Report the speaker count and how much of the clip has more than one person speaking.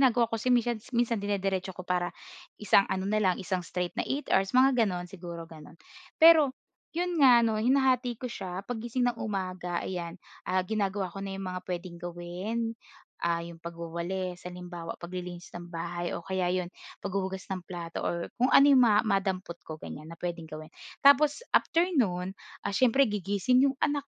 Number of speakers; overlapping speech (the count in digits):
1, no overlap